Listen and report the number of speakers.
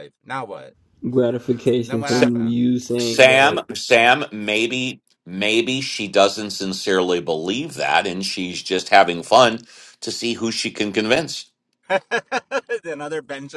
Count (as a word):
three